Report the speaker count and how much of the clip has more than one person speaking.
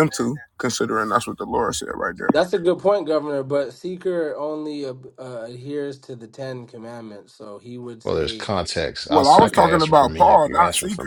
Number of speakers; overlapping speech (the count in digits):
3, about 22%